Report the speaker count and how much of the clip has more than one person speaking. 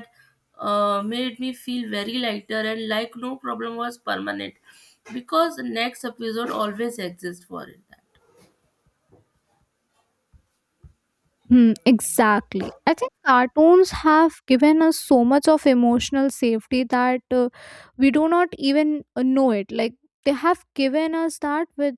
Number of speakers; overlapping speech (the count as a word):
two, no overlap